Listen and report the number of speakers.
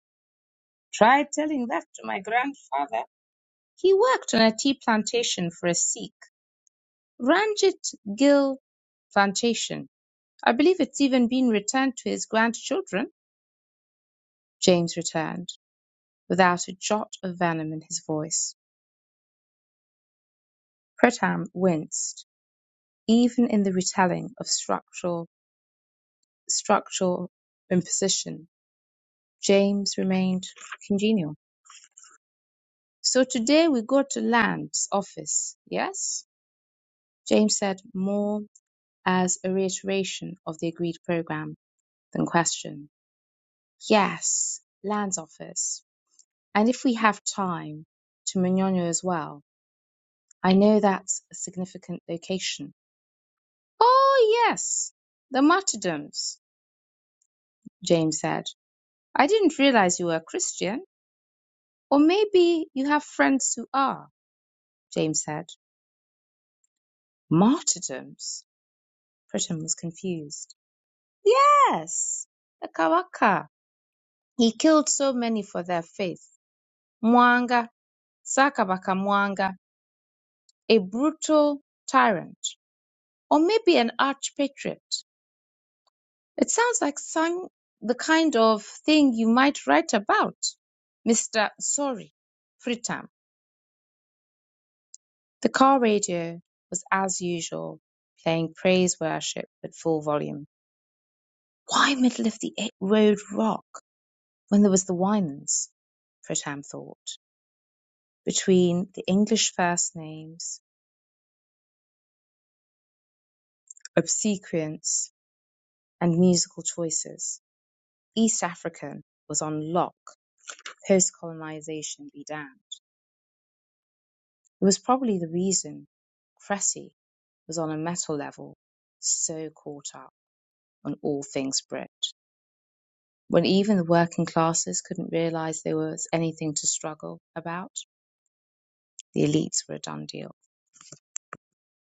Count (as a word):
one